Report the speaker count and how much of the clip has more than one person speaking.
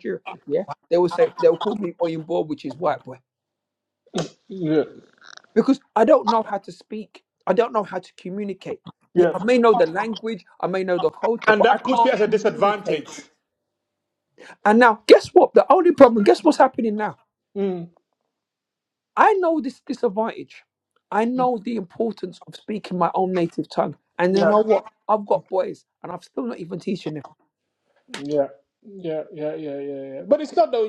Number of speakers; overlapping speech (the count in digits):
2, about 7%